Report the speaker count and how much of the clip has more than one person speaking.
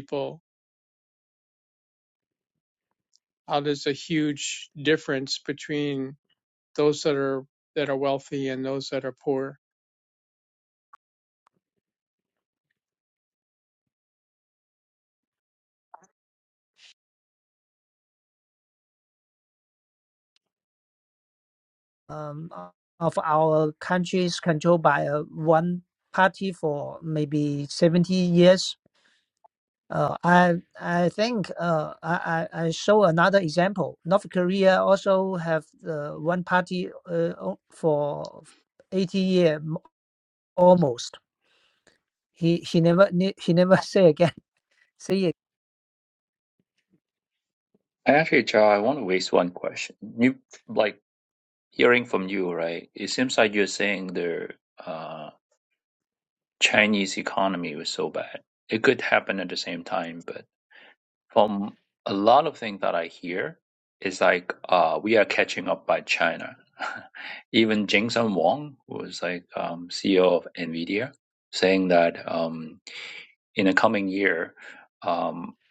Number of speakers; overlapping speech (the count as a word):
three, no overlap